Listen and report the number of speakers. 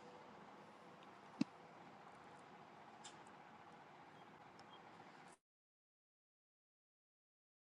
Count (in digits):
0